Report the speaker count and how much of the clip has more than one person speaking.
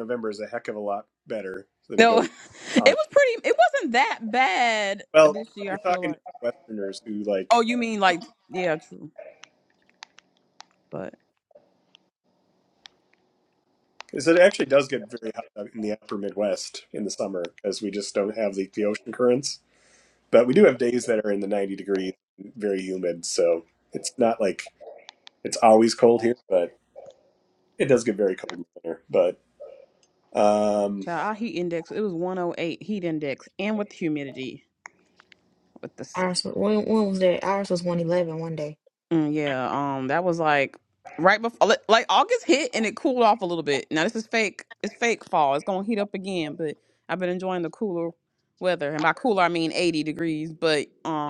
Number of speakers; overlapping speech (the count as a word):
three, about 2%